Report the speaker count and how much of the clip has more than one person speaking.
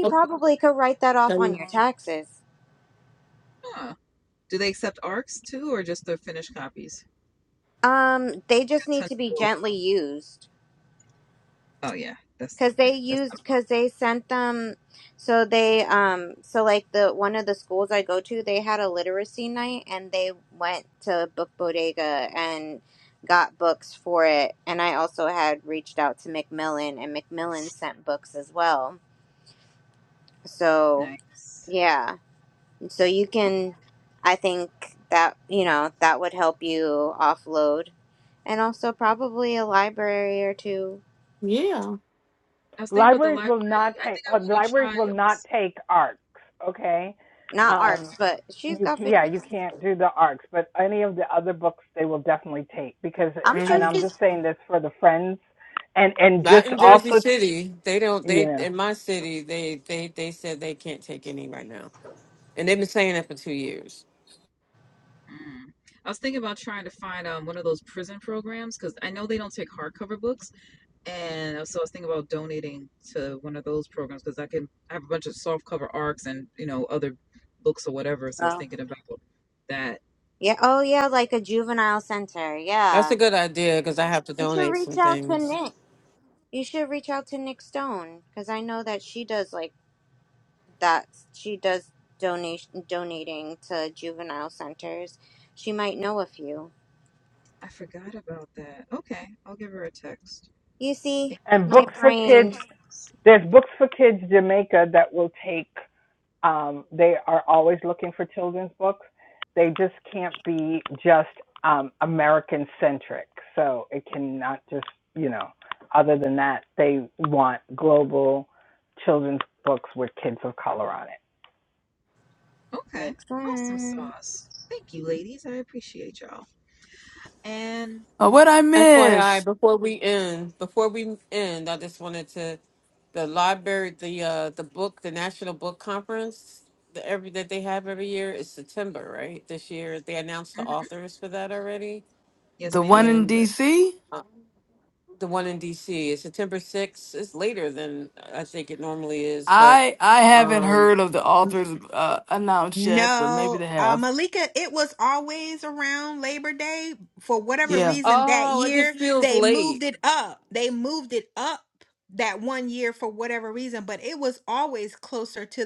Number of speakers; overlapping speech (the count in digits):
7, about 10%